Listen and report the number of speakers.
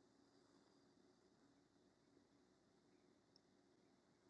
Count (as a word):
zero